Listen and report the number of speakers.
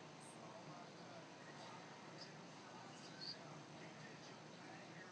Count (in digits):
0